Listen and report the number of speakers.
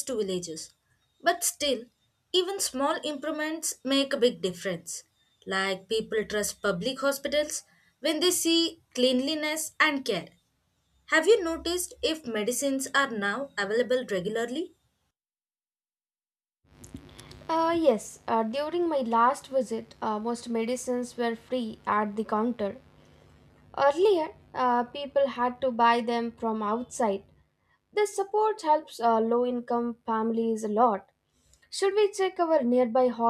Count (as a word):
two